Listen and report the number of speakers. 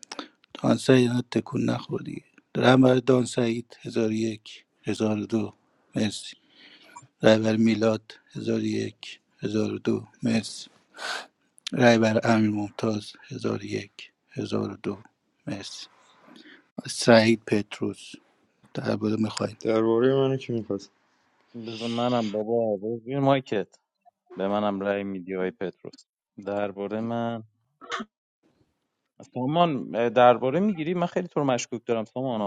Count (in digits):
3